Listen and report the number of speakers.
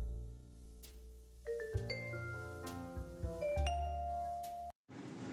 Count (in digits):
0